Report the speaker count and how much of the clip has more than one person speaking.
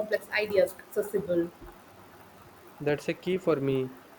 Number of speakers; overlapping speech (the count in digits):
2, no overlap